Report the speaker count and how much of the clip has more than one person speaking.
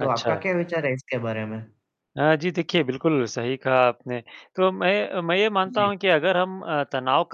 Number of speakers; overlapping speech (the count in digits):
2, about 9%